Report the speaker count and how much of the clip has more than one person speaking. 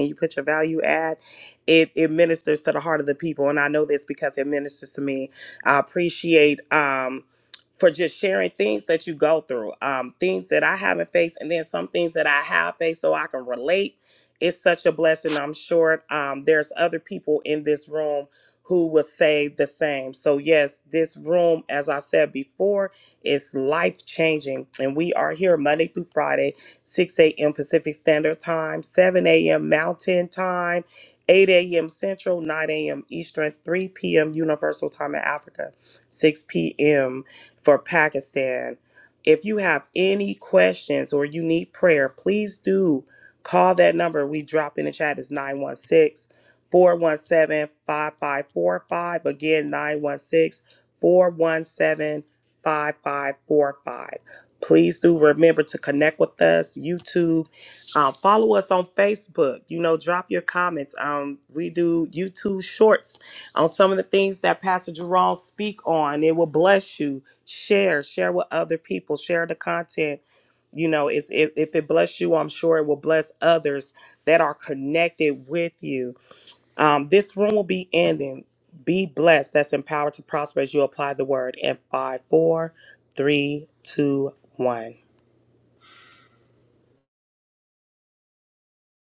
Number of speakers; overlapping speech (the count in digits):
1, no overlap